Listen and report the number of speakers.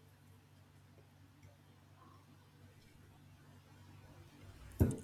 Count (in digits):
0